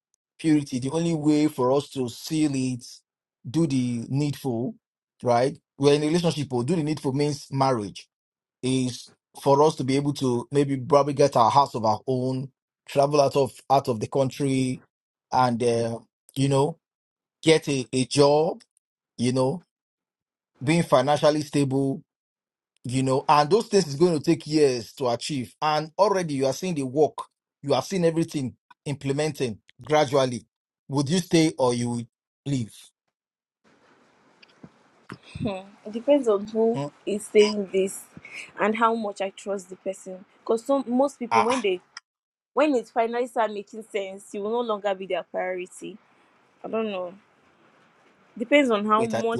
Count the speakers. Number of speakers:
two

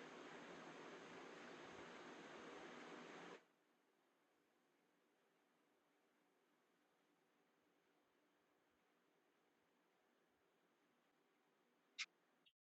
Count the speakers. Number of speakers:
zero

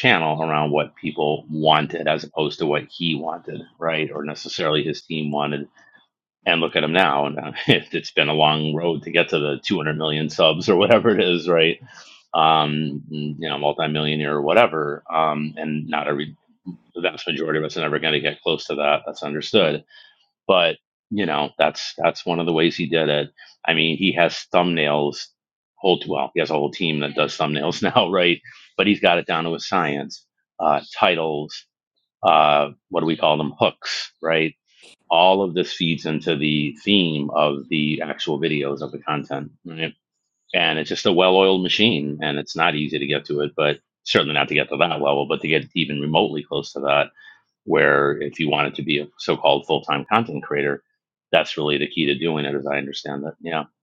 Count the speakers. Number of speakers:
one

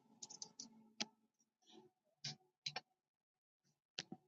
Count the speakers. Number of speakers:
zero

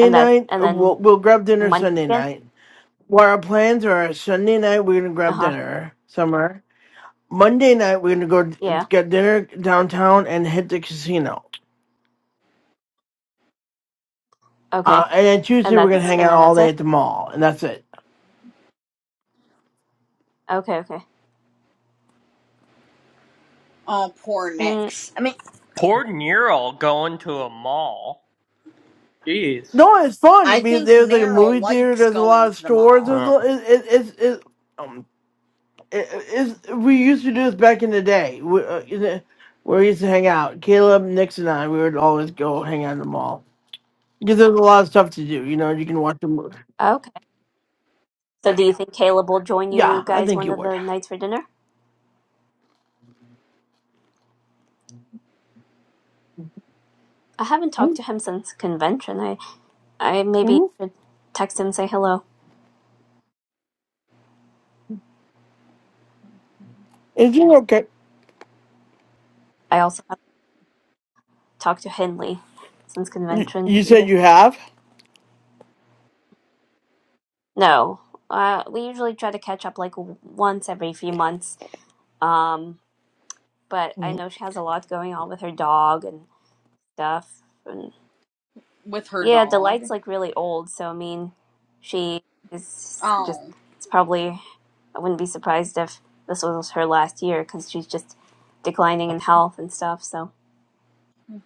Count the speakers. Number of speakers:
four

